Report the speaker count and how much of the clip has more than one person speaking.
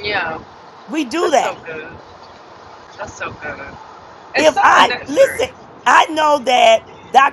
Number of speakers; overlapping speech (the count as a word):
two, about 18%